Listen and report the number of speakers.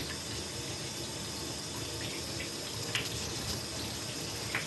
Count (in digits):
0